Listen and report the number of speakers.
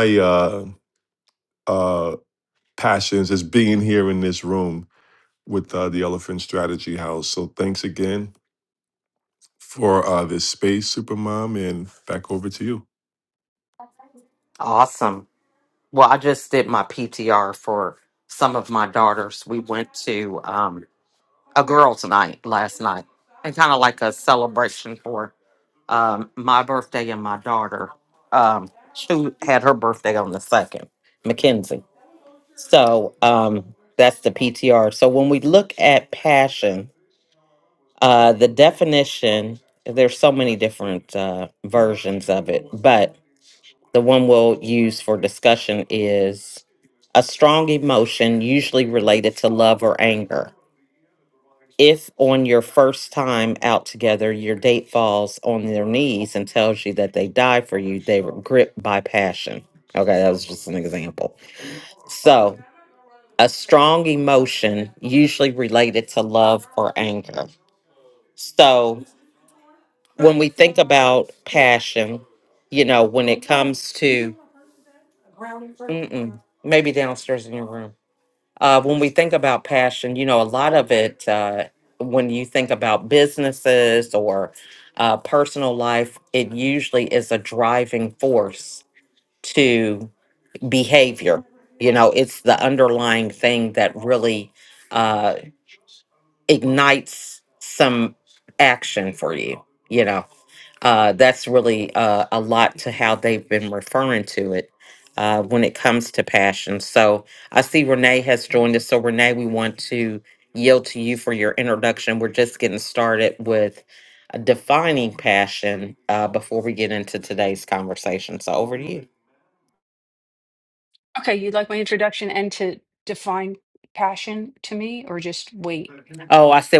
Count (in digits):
3